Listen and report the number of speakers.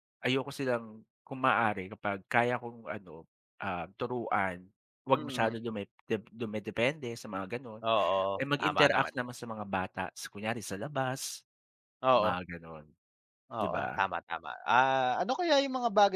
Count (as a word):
two